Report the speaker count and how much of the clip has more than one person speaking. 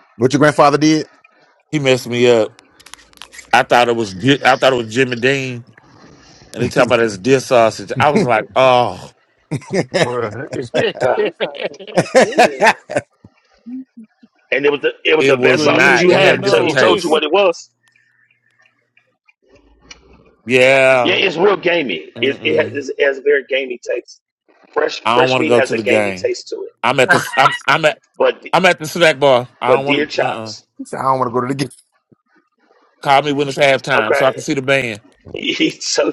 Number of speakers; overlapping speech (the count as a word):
five, about 13%